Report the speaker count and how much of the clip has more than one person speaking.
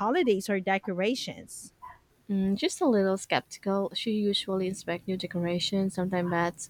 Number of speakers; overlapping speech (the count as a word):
two, no overlap